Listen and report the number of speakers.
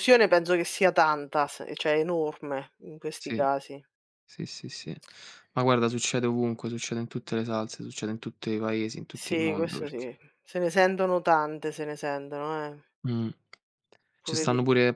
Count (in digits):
2